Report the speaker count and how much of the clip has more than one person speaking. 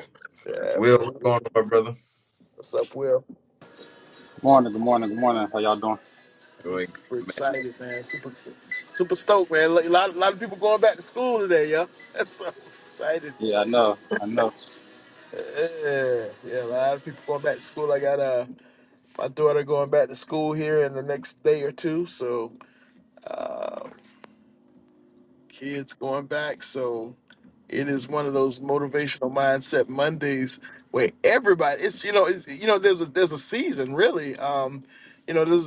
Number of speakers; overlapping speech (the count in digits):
3, about 2%